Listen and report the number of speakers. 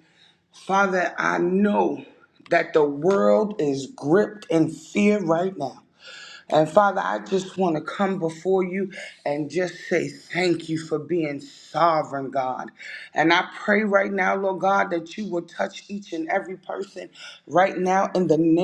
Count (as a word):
one